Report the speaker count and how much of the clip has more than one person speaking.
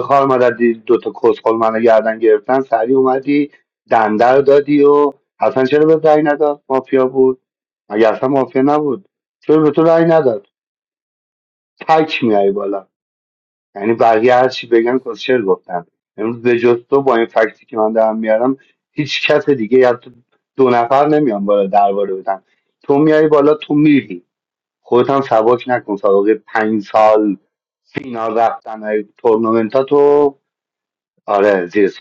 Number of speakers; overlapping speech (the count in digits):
1, no overlap